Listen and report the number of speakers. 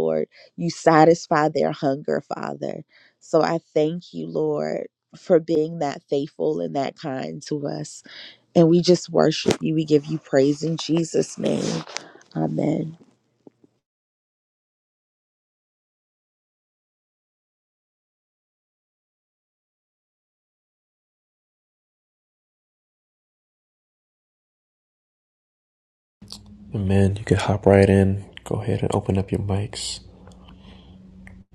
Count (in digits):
2